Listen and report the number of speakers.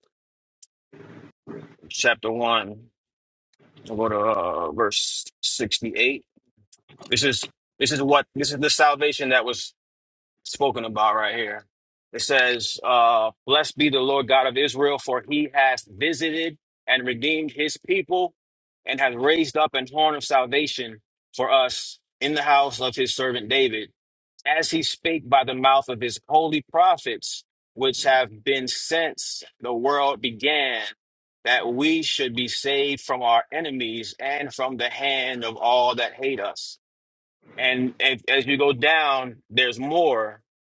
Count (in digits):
1